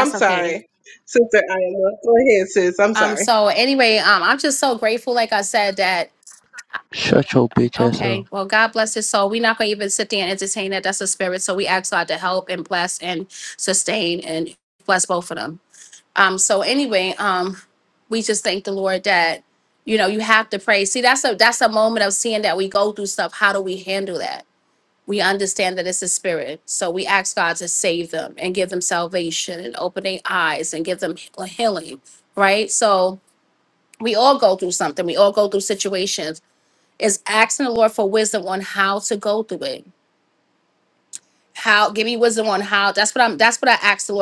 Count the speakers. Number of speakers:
three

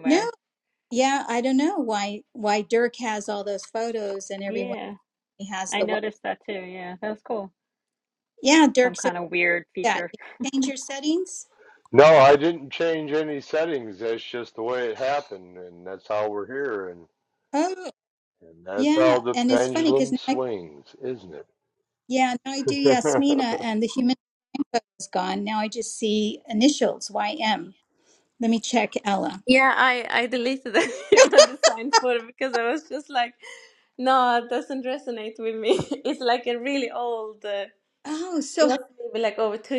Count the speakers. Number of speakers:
four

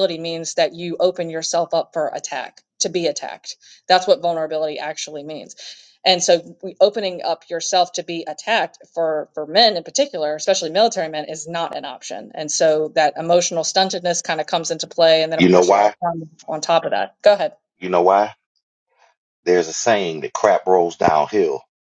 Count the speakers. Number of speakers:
two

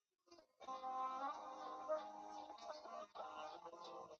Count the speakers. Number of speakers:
zero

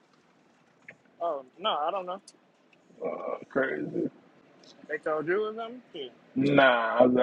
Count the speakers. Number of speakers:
two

